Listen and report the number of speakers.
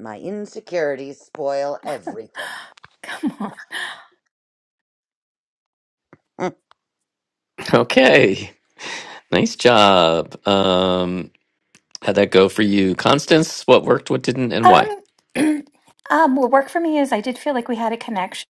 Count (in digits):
3